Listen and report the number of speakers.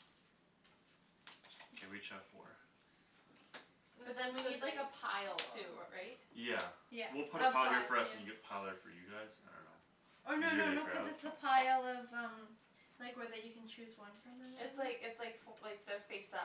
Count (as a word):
three